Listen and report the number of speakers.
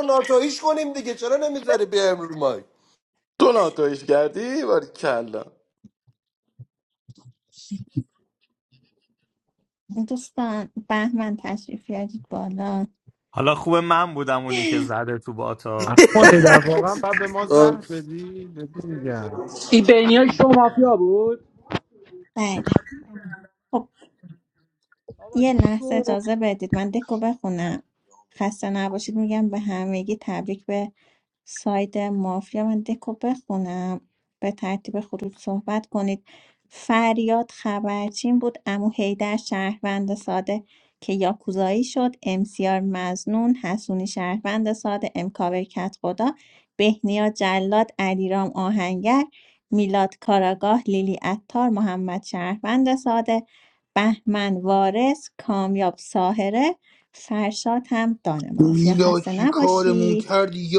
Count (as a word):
seven